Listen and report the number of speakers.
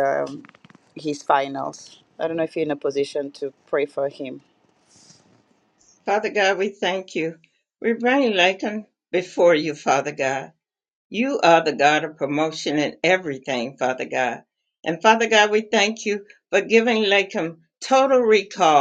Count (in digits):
2